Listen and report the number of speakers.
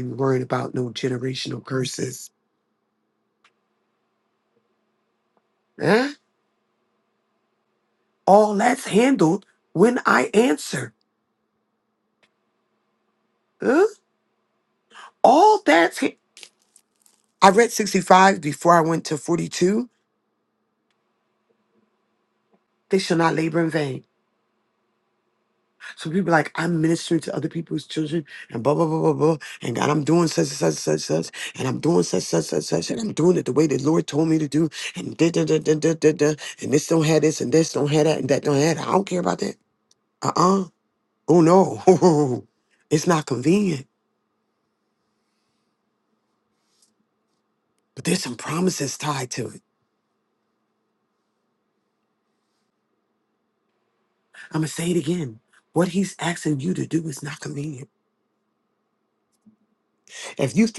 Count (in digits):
1